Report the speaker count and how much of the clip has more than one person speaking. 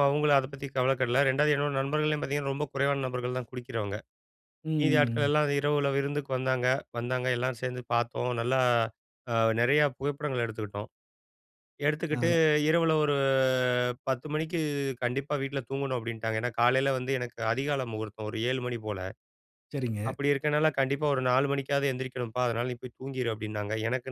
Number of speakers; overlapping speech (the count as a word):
two, about 4%